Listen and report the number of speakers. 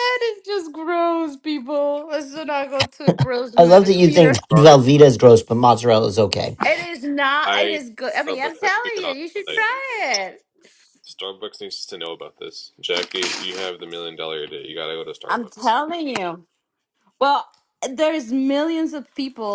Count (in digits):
3